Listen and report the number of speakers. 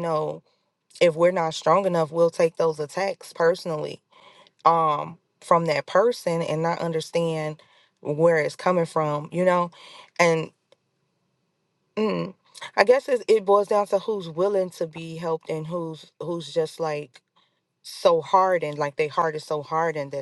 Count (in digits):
1